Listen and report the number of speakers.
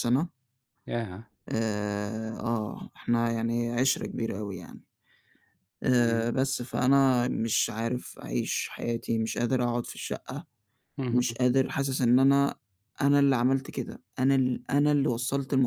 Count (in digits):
2